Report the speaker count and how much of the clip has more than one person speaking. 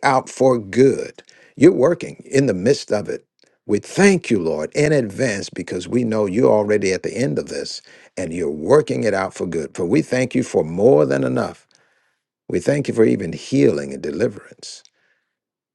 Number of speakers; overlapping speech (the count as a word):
one, no overlap